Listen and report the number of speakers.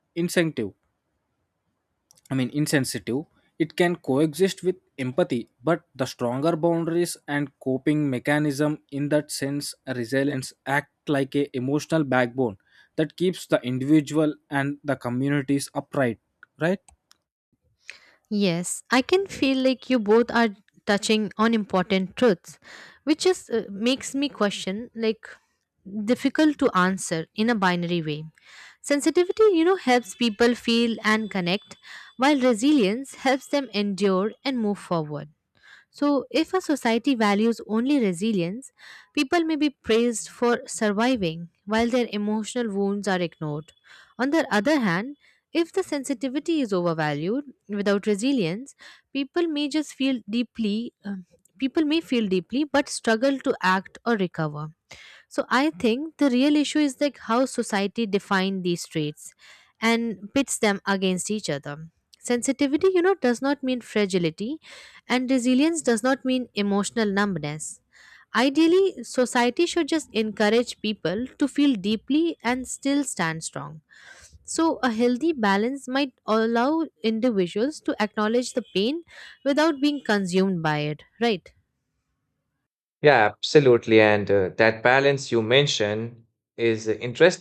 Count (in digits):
3